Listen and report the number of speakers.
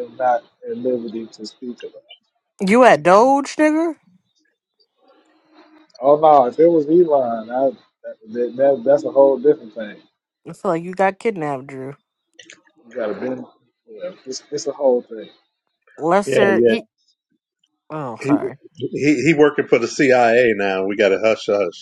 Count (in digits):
3